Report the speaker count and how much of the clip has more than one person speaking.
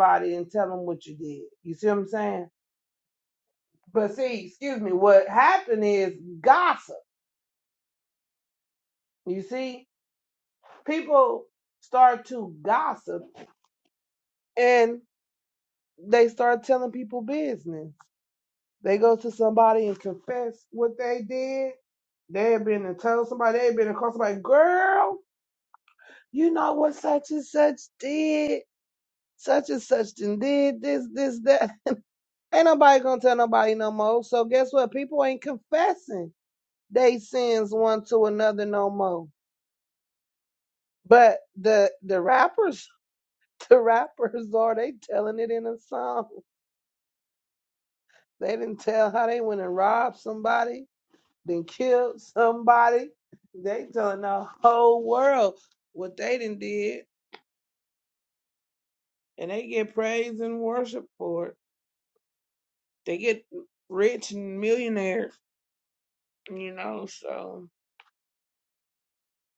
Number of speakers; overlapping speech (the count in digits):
1, no overlap